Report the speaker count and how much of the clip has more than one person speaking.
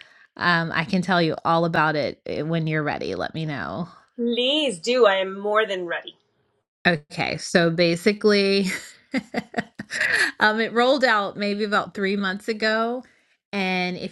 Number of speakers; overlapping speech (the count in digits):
2, no overlap